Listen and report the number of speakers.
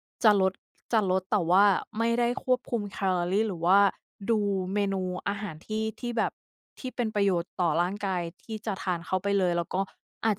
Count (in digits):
1